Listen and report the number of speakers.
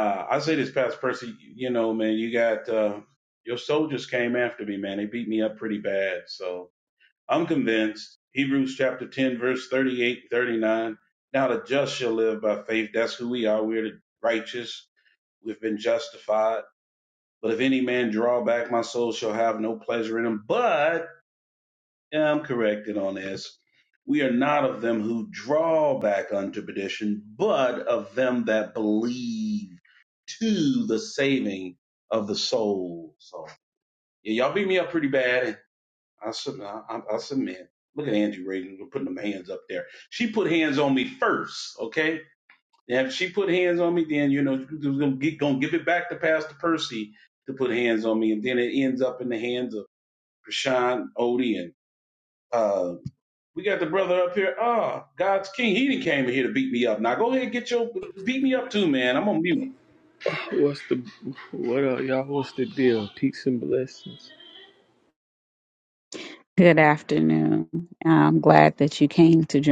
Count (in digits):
3